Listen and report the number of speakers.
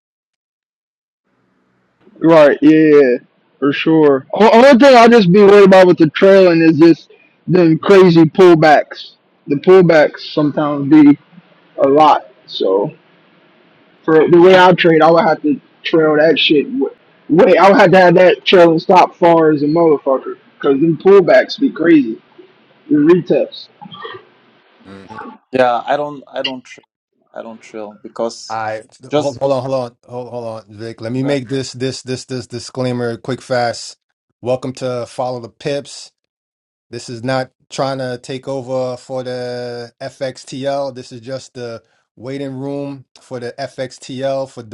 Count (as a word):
three